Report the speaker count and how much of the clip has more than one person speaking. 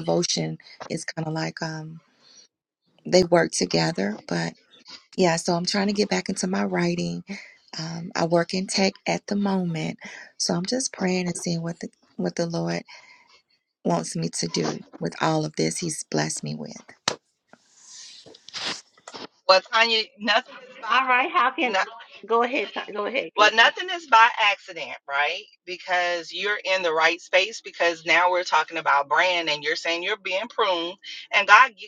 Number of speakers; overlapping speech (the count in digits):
3, about 2%